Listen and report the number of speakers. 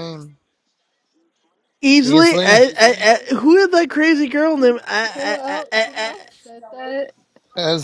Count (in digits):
3